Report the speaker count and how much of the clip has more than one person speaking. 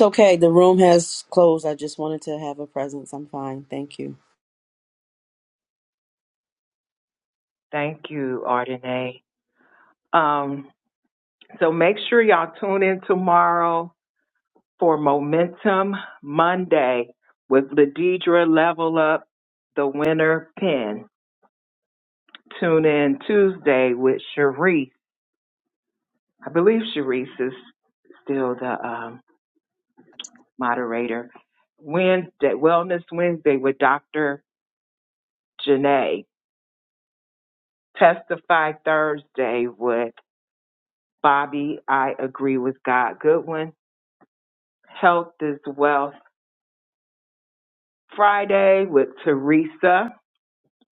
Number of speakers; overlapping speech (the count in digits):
2, no overlap